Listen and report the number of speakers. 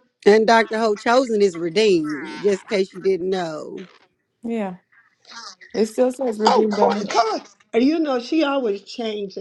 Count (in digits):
3